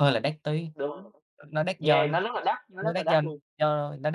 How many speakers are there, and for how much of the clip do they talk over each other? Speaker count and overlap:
2, about 17%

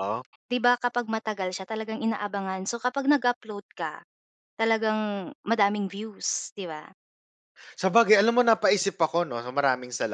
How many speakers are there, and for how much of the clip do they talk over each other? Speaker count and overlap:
2, no overlap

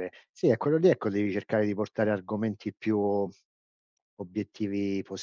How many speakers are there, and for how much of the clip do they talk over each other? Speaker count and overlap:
1, no overlap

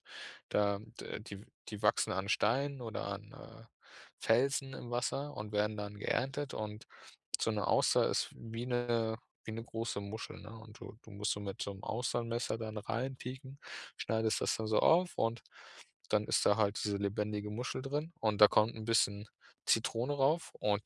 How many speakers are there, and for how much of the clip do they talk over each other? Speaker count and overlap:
1, no overlap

